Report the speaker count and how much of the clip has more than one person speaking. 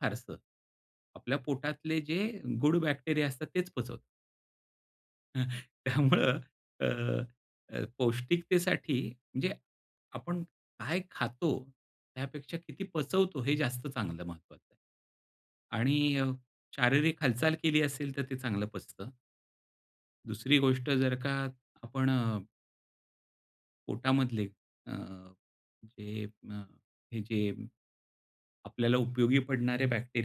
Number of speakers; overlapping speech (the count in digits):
1, no overlap